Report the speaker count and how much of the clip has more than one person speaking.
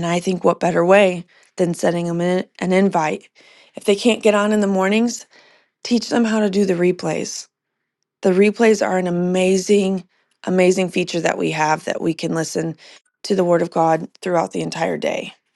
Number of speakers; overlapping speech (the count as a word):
one, no overlap